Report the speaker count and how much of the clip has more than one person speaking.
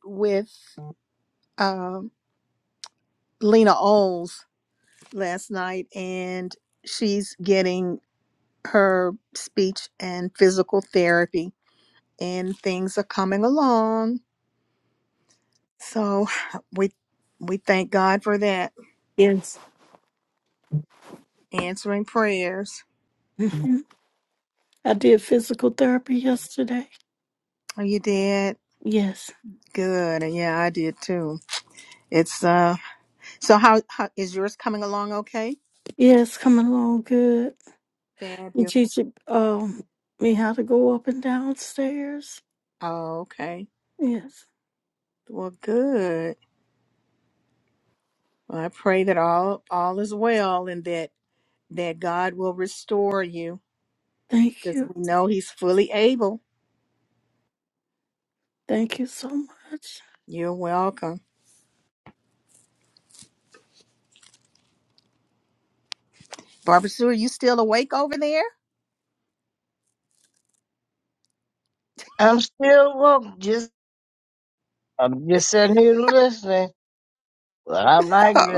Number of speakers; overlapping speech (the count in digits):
3, under 1%